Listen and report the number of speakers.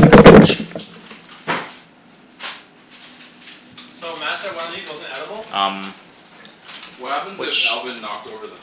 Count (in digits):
3